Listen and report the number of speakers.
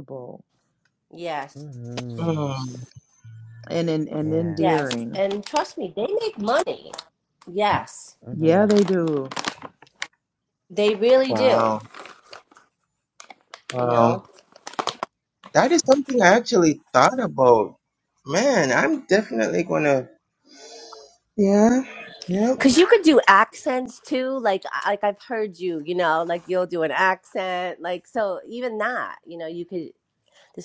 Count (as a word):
four